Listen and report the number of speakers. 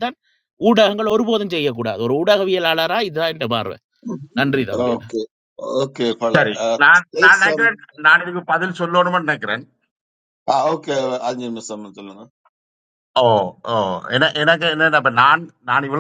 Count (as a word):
three